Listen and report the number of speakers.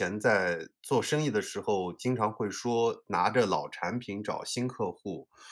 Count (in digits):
1